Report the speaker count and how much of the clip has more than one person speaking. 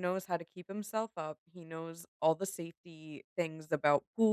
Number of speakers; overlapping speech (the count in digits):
1, no overlap